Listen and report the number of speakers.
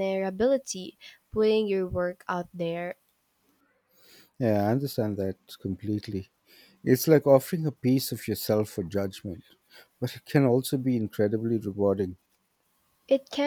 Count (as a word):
two